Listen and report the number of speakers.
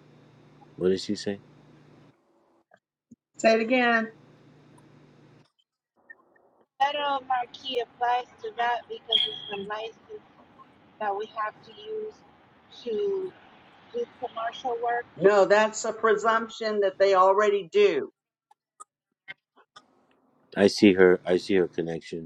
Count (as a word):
three